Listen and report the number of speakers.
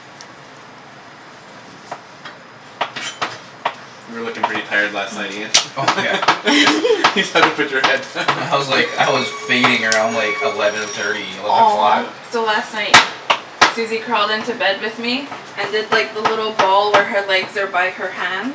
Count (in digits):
3